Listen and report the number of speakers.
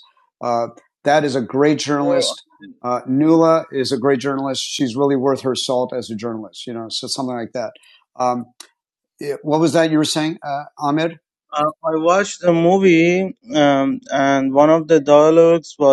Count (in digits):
2